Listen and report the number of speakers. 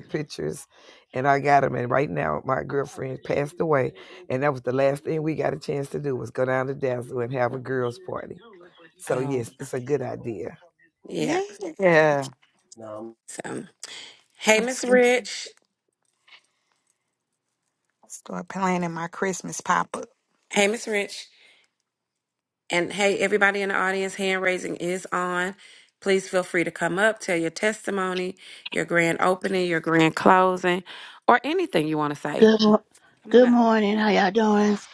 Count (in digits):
4